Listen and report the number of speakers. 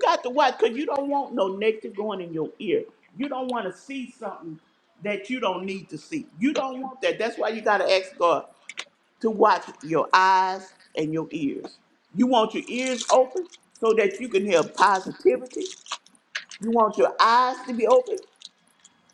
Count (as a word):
one